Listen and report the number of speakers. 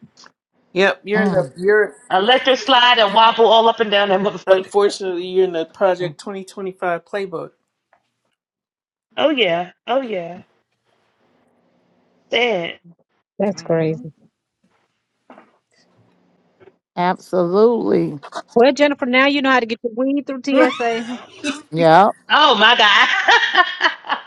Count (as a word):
four